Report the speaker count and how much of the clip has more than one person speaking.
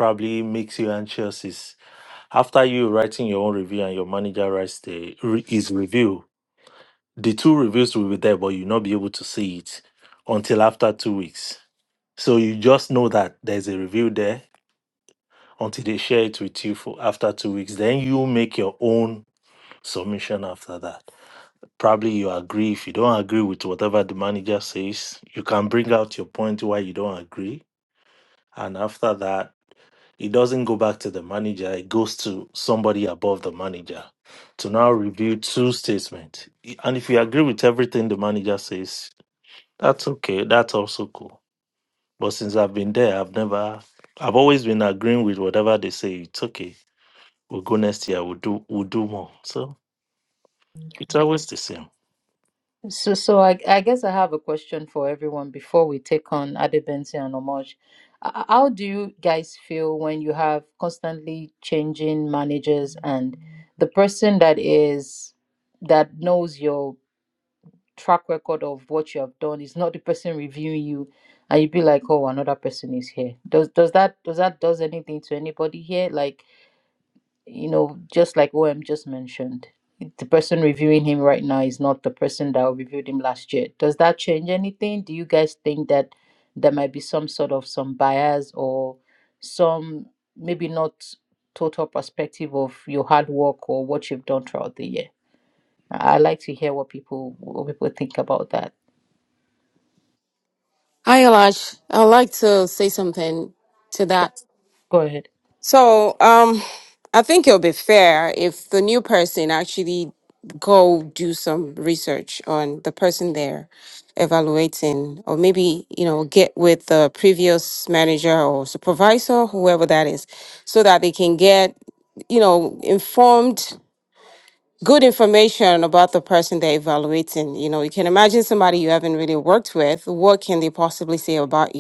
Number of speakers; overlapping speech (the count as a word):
three, no overlap